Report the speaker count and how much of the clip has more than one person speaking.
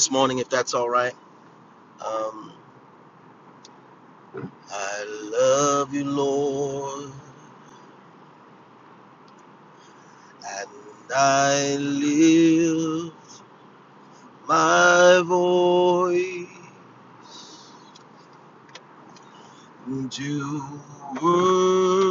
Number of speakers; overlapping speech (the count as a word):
one, no overlap